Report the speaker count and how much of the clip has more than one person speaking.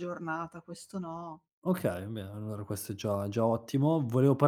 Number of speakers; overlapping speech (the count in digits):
2, no overlap